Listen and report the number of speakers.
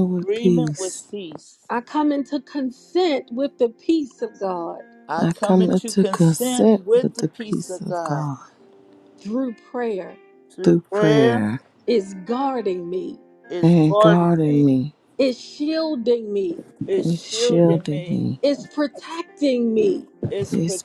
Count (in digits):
3